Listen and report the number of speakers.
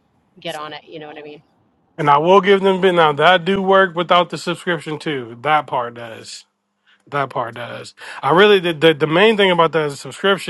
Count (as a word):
two